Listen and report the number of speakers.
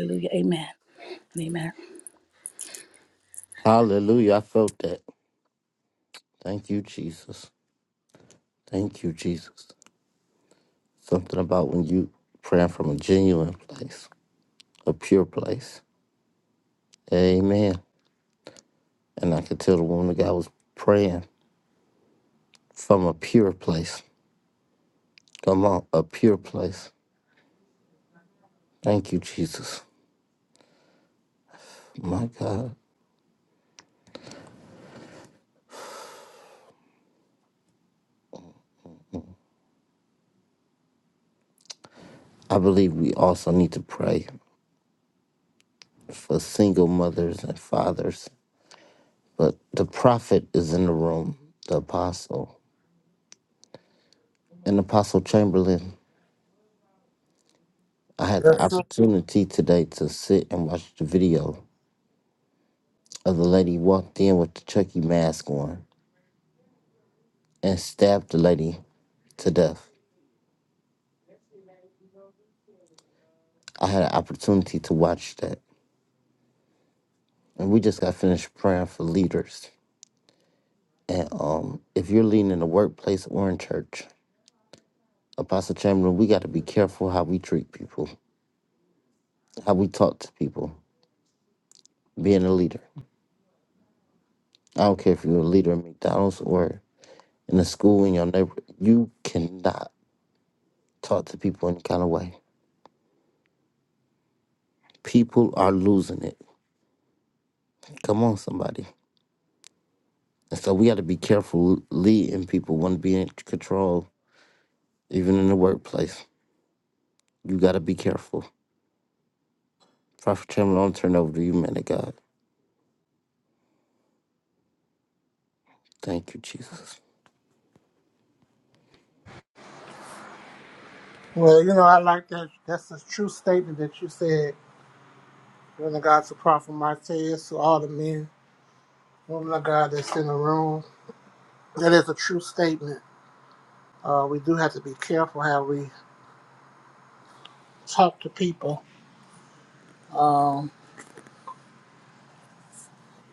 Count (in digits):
3